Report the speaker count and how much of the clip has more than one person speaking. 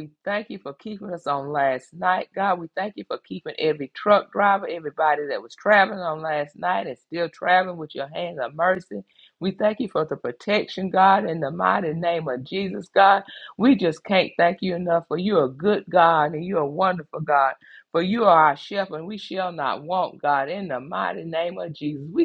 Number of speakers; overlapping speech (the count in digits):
1, no overlap